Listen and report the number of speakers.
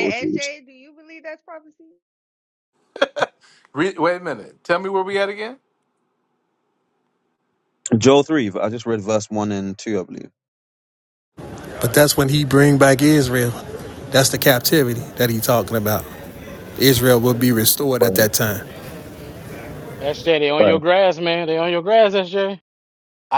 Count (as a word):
five